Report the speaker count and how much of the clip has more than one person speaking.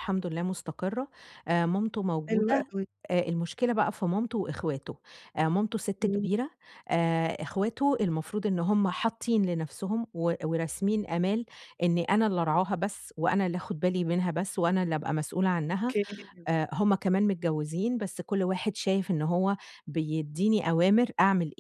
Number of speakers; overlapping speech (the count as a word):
two, about 3%